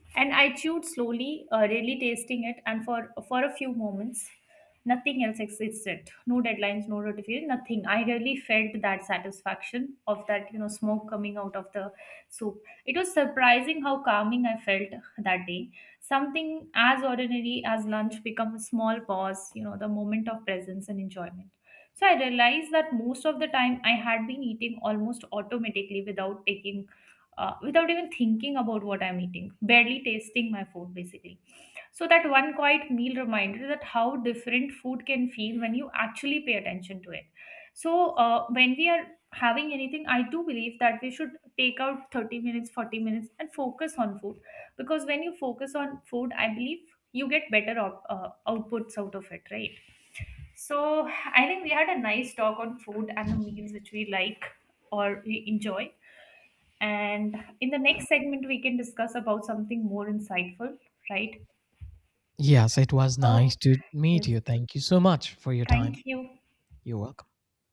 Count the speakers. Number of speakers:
2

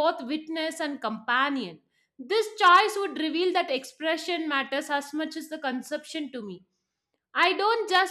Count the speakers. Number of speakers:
1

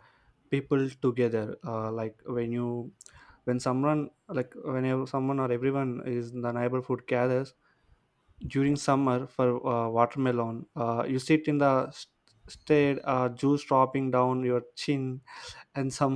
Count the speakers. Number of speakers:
1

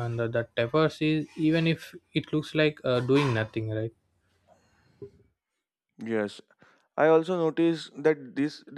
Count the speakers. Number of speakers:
2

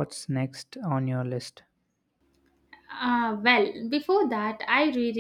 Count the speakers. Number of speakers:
2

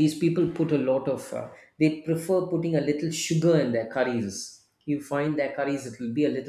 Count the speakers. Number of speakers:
1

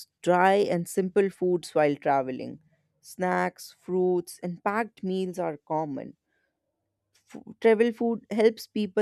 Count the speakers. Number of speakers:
1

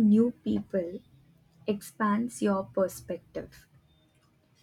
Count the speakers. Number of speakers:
1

